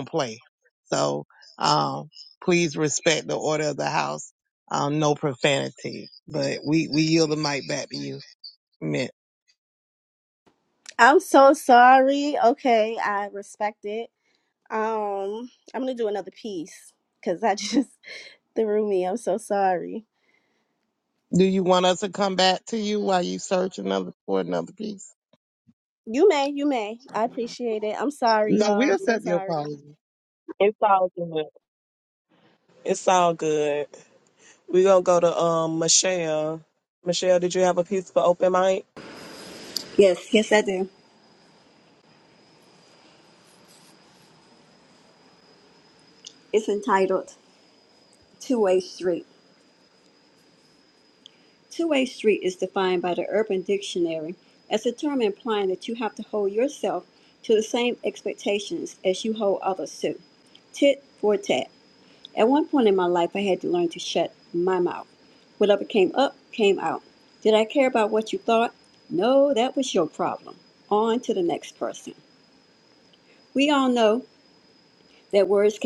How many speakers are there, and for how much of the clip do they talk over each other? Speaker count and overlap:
4, about 2%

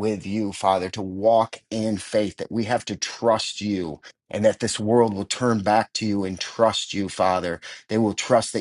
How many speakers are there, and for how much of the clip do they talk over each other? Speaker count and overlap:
1, no overlap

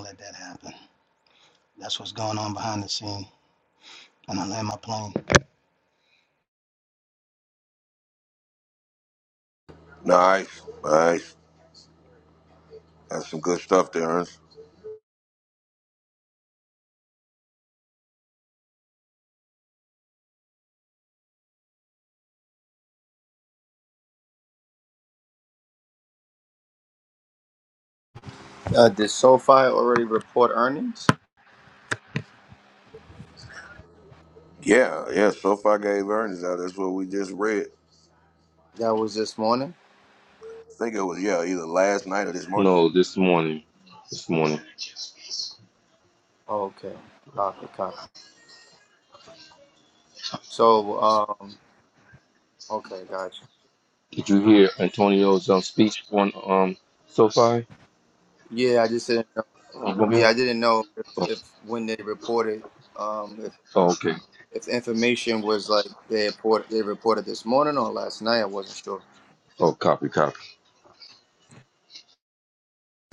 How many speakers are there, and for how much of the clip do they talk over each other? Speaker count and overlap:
4, about 1%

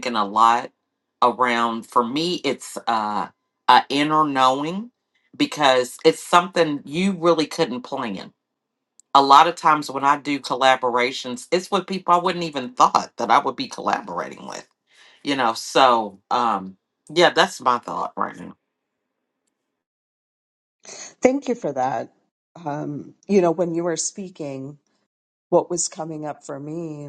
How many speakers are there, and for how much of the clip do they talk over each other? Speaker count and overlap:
2, no overlap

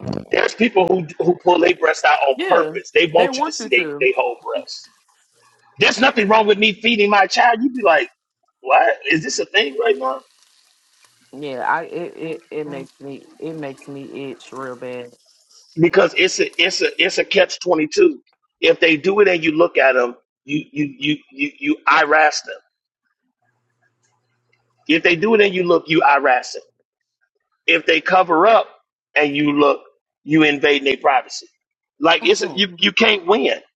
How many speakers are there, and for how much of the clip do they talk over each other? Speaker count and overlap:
2, about 4%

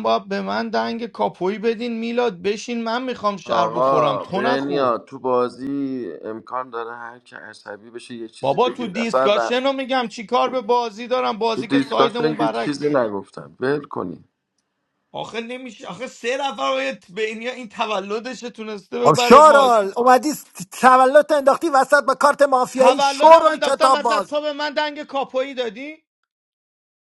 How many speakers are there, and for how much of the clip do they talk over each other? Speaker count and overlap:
3, about 23%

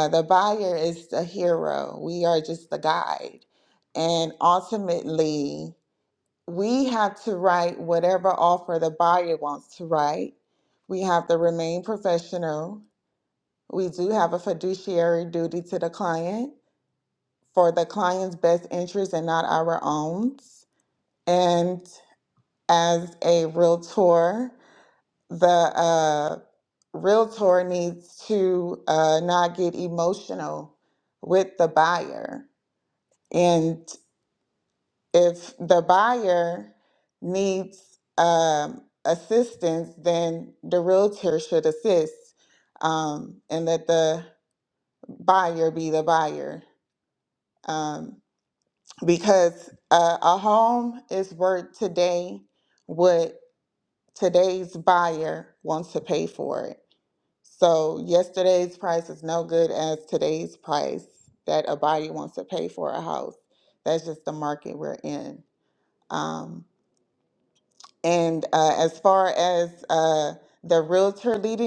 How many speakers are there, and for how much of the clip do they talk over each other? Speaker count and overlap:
1, no overlap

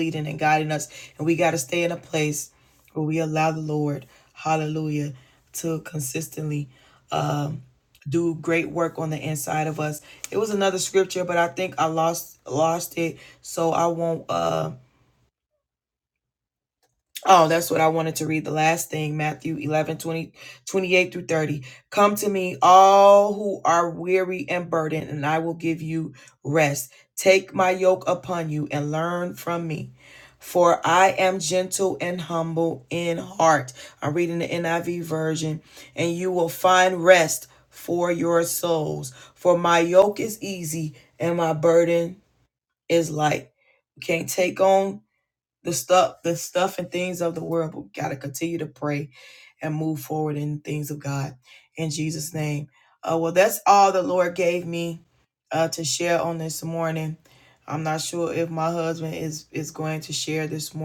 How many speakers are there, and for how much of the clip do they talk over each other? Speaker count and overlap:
1, no overlap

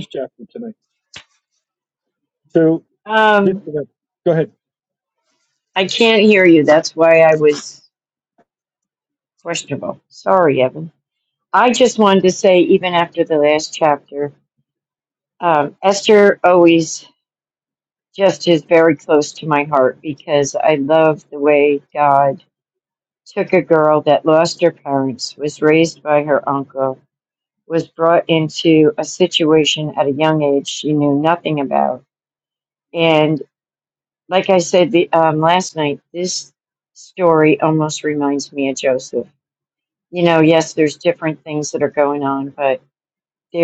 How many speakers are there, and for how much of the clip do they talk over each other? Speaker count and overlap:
2, under 1%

